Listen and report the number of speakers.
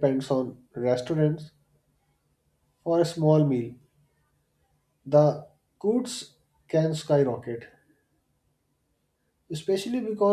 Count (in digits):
1